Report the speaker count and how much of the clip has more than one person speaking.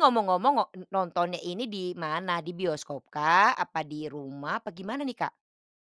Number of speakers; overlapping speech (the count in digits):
1, no overlap